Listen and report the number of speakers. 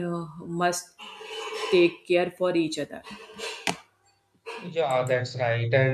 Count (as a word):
two